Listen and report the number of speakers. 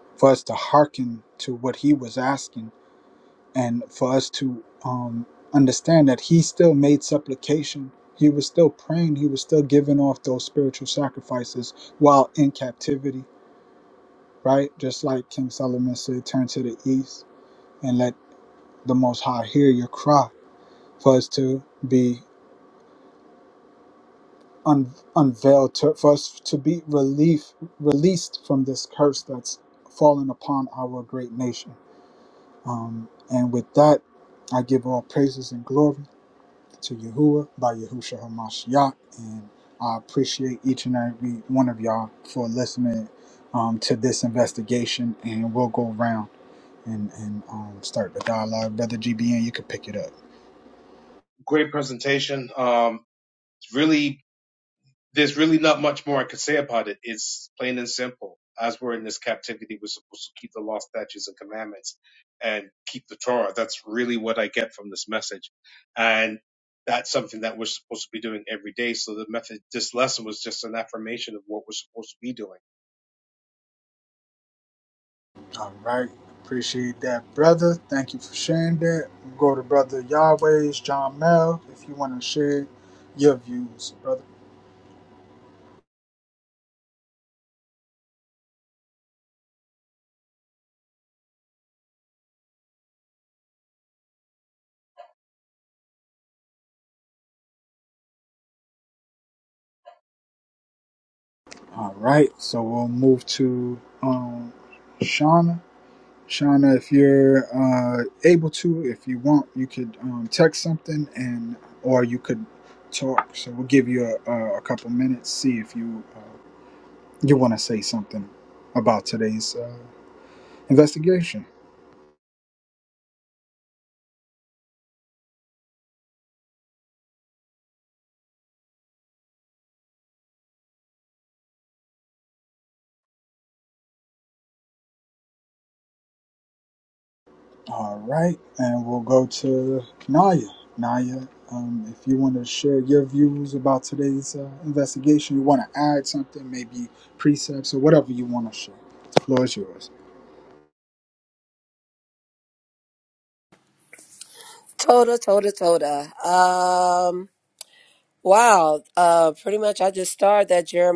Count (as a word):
three